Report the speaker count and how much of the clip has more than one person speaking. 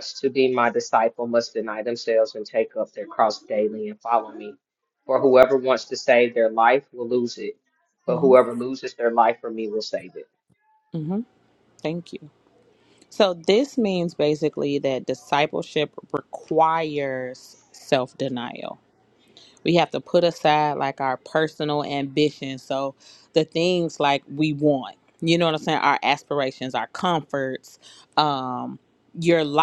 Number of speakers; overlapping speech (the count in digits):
2, about 1%